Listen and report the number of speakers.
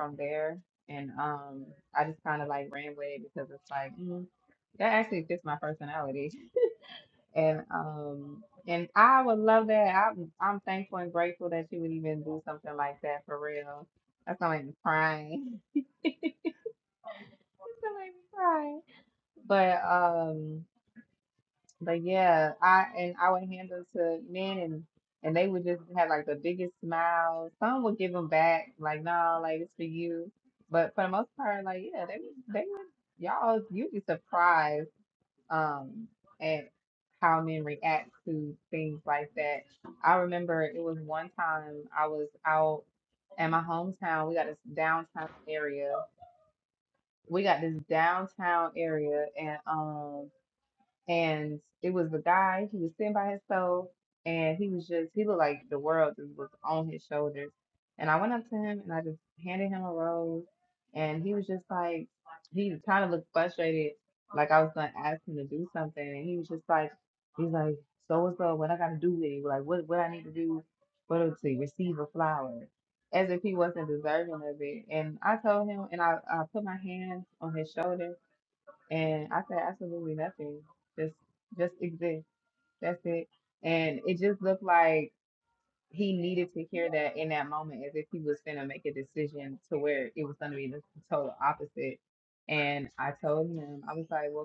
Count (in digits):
1